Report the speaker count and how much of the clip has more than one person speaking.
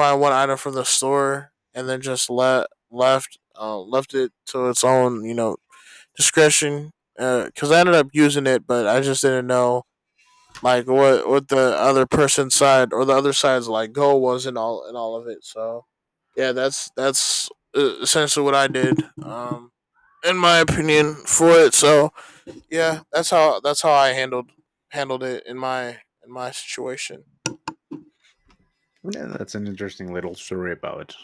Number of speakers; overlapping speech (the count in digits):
2, no overlap